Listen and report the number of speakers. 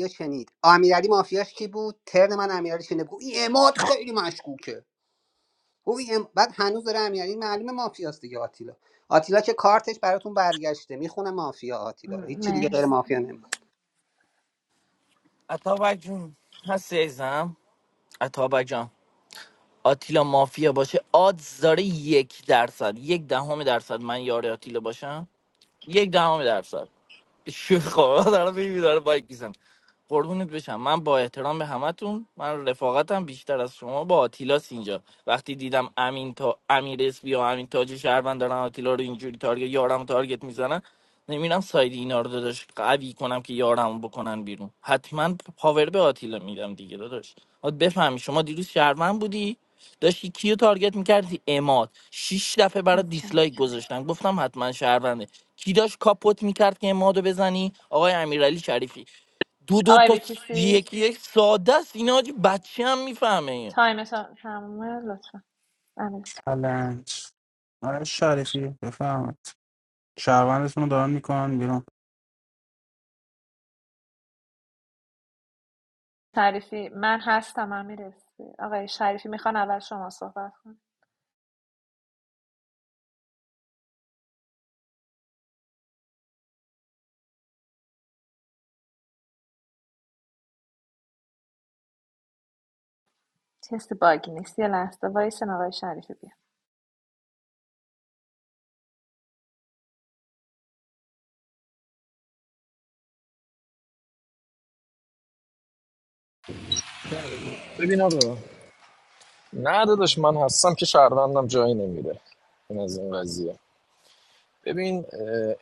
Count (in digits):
5